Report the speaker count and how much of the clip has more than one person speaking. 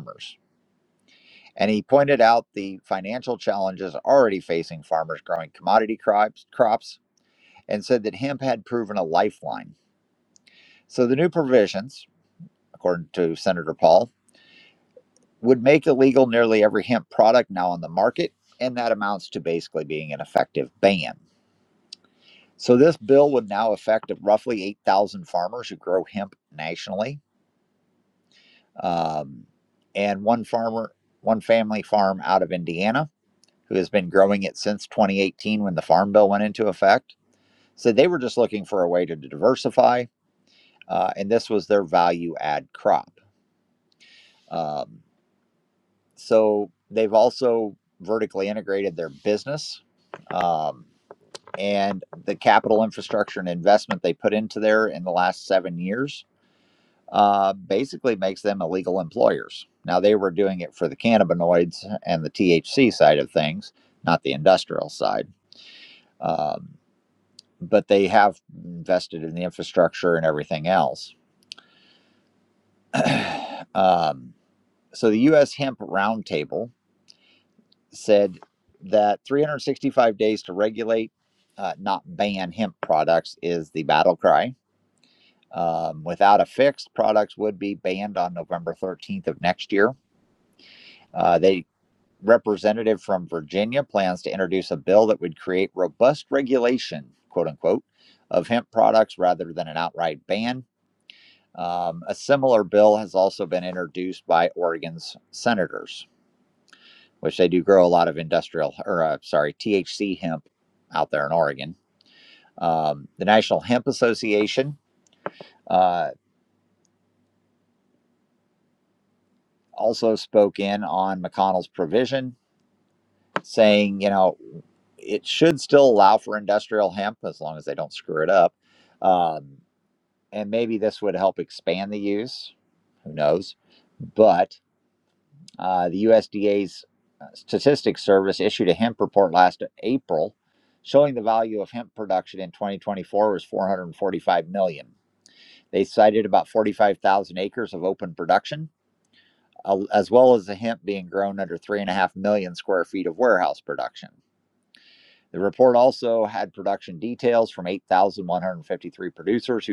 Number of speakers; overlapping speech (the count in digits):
1, no overlap